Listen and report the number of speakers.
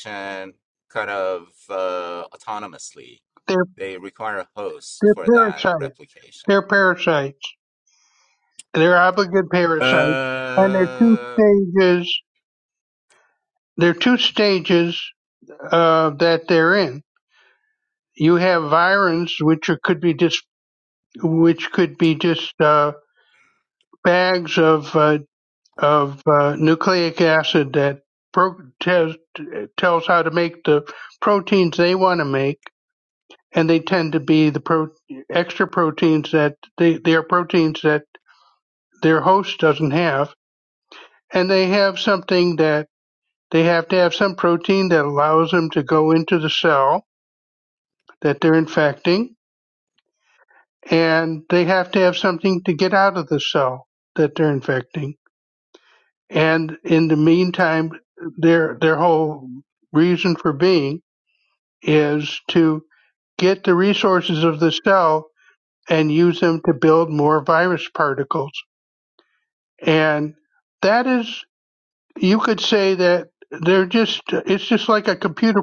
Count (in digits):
2